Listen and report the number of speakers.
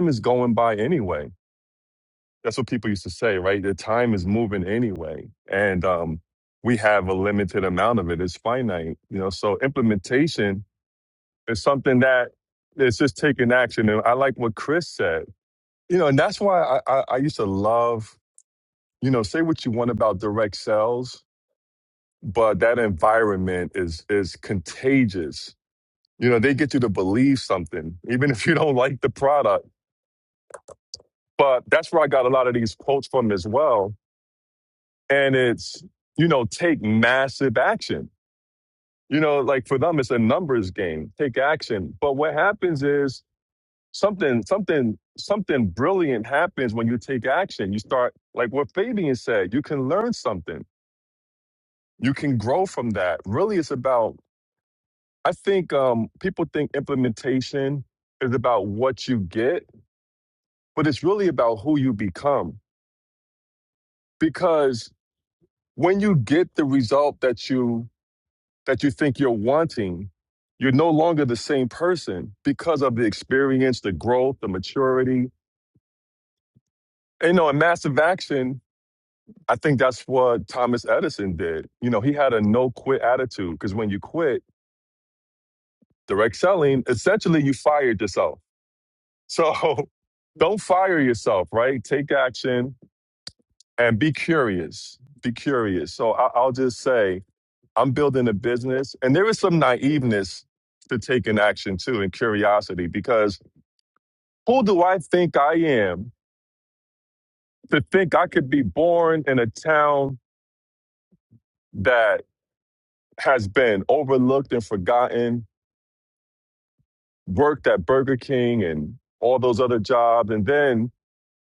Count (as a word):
one